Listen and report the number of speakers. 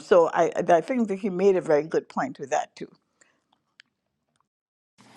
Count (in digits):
1